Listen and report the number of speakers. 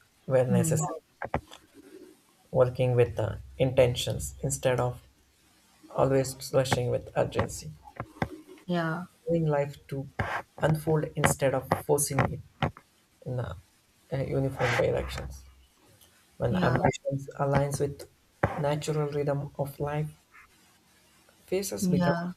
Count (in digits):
2